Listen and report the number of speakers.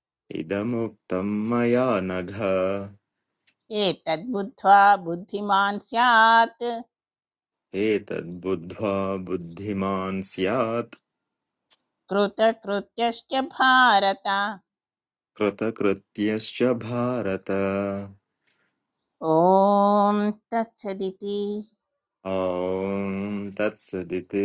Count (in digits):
2